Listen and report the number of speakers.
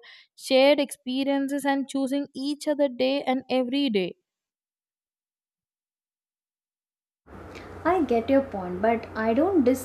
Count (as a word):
two